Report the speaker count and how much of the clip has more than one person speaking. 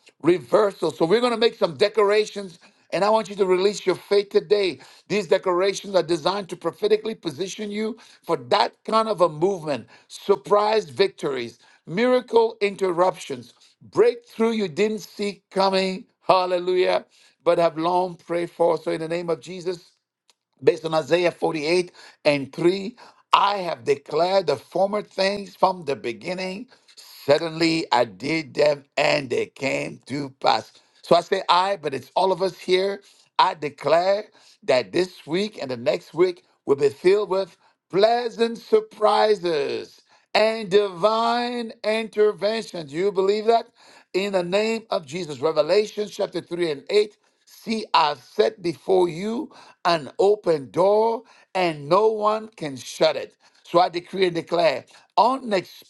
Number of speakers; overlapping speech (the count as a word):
one, no overlap